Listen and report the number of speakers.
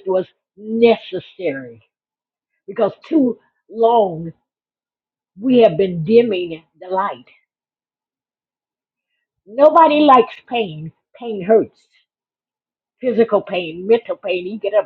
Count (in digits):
1